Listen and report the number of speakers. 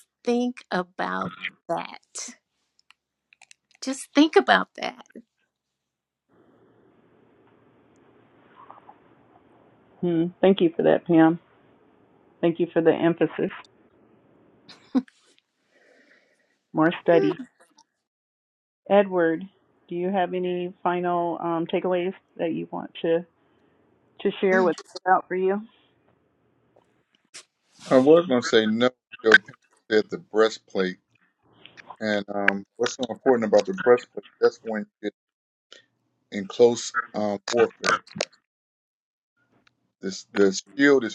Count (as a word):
three